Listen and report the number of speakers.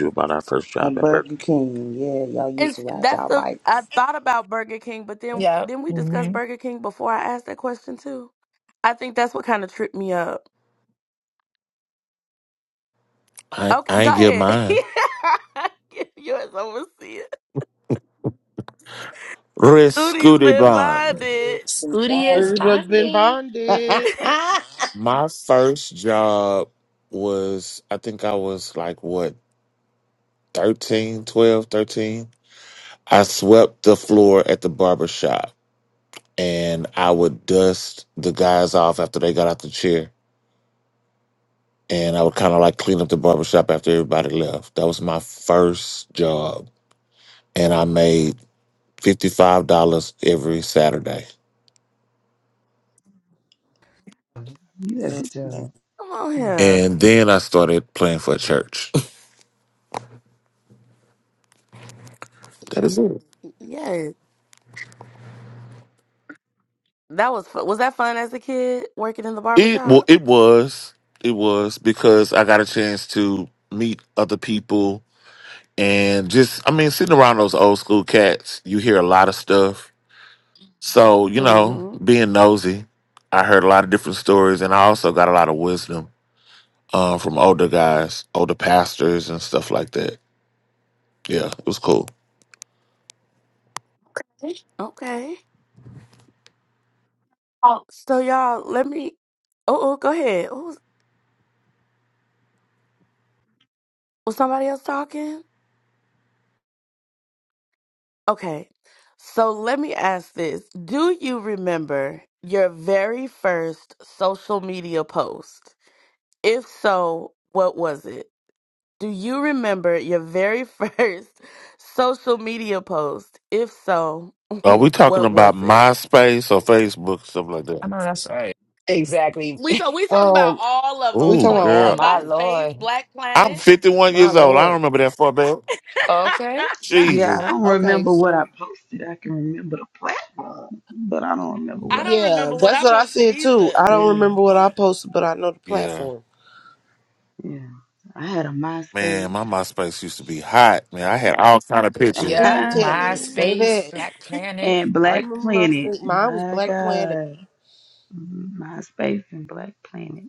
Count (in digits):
7